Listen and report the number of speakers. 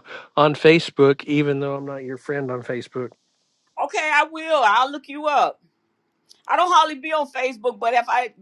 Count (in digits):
2